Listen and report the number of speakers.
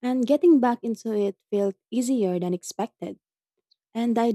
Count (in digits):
1